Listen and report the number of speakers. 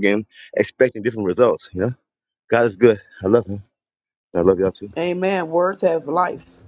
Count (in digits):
2